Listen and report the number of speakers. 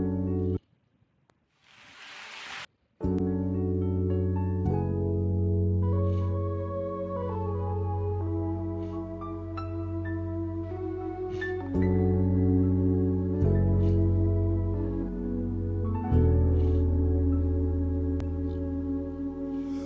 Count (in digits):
0